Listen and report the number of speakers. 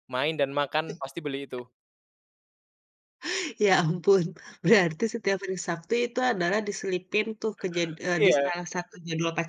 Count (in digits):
2